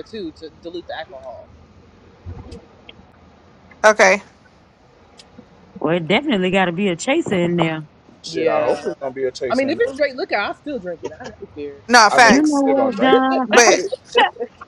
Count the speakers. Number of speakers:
four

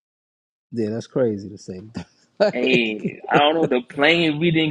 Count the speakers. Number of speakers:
two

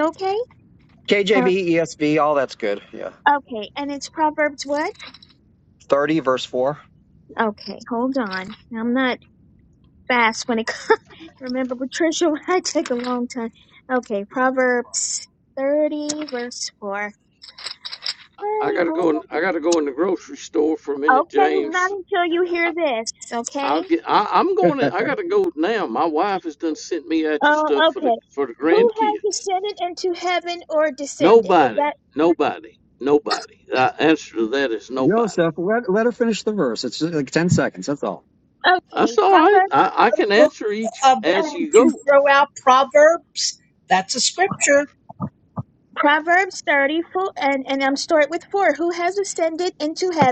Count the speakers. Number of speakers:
four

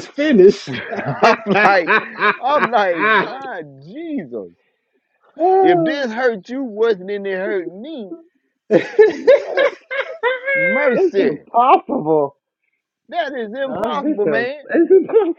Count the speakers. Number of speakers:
three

